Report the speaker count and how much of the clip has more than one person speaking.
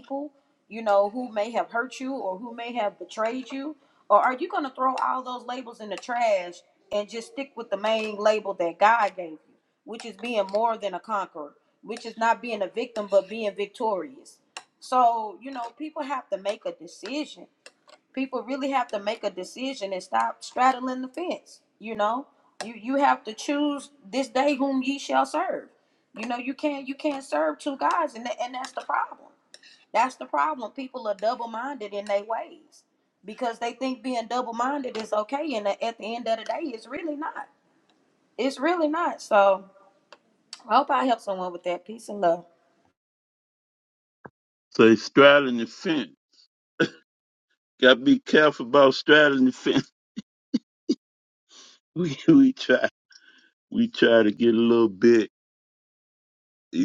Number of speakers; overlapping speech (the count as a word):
two, no overlap